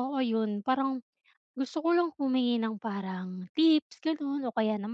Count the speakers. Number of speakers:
1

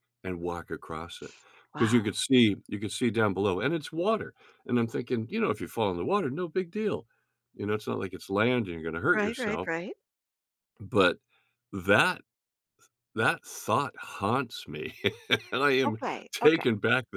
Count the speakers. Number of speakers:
2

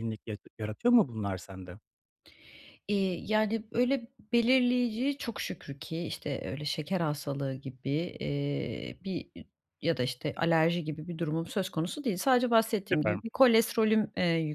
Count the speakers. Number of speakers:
2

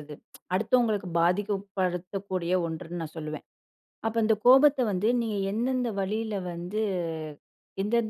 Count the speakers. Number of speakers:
1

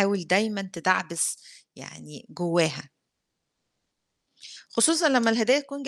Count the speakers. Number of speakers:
1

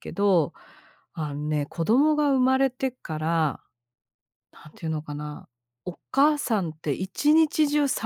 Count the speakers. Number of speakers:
1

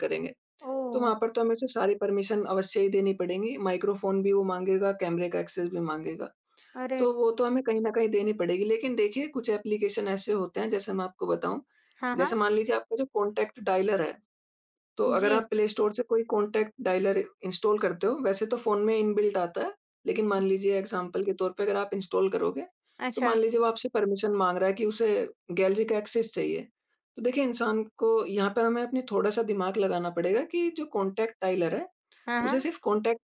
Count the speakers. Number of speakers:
2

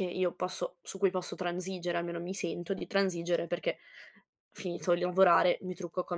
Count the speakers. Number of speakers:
1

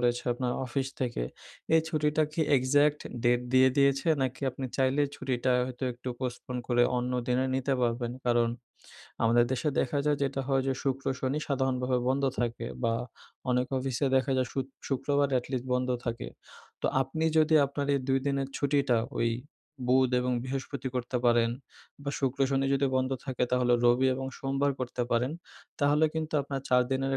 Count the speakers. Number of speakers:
1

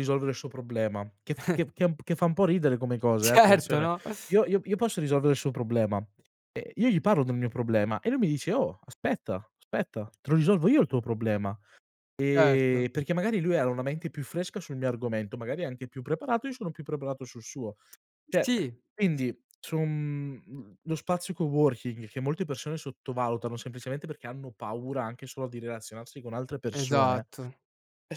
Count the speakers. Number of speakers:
2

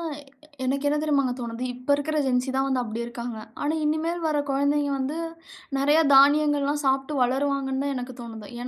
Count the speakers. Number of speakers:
1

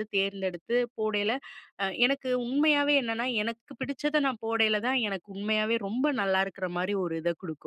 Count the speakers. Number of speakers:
1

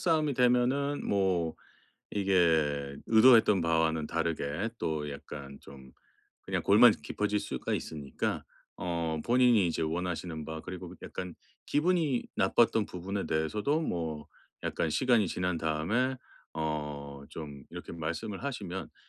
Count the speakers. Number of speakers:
1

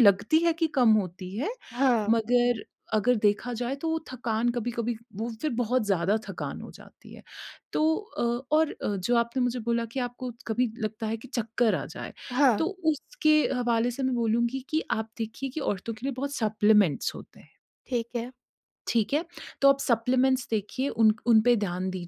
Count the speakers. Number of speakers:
2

